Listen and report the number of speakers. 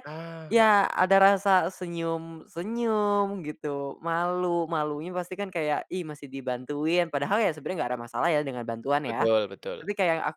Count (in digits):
2